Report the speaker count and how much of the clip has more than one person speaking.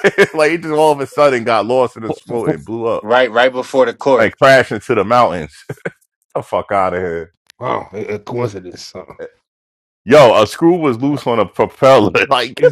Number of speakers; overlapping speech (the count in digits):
3, about 6%